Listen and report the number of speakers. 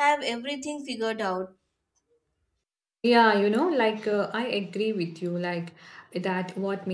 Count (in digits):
2